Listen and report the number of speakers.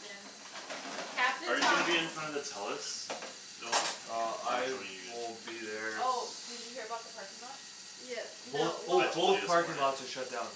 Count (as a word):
four